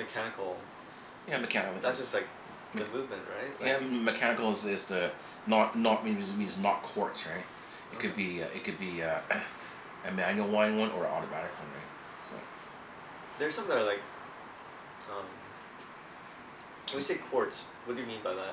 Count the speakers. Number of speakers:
2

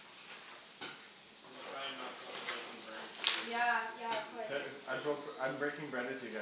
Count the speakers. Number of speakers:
3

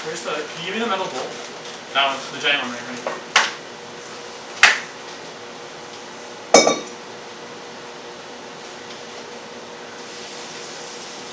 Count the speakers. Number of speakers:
1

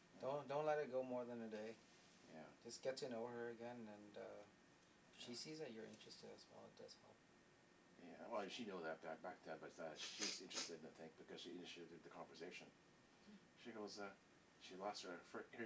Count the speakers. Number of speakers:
2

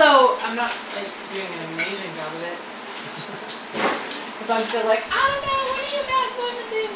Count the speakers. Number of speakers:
1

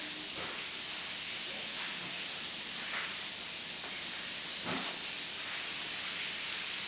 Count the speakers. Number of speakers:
0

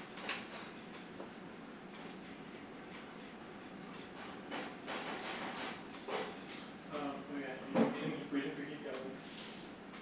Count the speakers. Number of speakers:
1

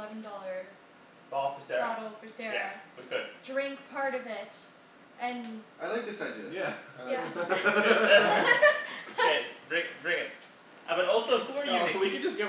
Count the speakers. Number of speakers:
4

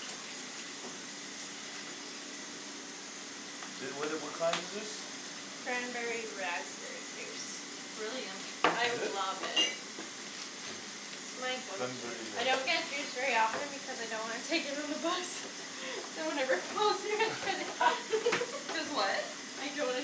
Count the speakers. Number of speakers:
3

